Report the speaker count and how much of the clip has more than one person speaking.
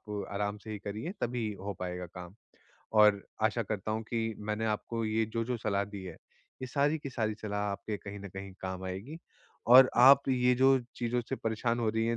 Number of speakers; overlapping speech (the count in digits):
1, no overlap